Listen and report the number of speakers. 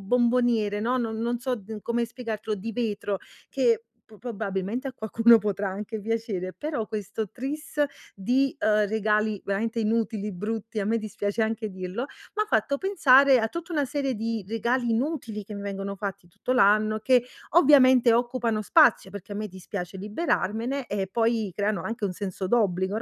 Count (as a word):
one